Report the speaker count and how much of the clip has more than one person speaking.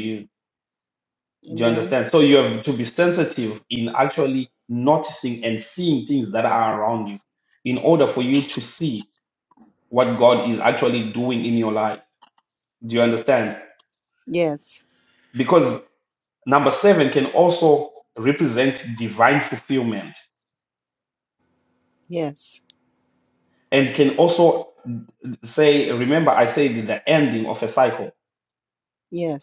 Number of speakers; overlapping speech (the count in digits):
2, about 1%